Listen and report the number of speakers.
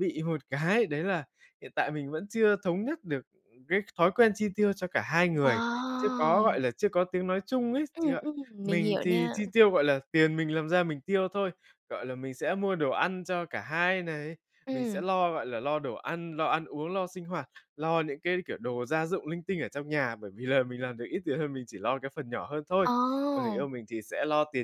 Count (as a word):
two